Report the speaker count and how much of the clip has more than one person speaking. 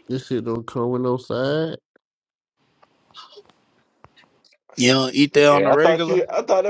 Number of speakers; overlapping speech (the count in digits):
3, about 11%